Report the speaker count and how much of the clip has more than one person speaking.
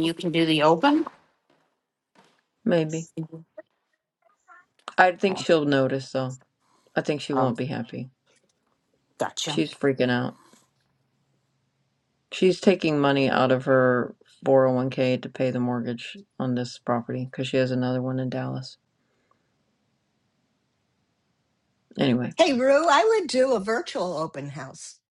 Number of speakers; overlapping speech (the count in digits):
3, about 2%